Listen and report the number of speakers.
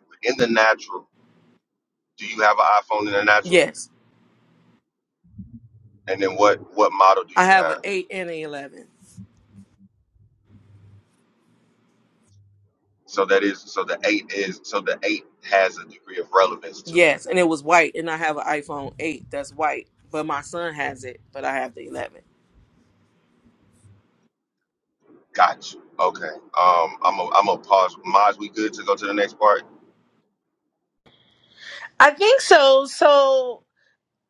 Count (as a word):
three